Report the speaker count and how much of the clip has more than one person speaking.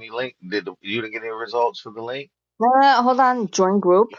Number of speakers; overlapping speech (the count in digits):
2, no overlap